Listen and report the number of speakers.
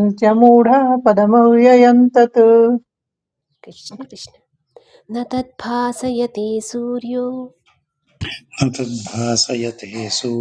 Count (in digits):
3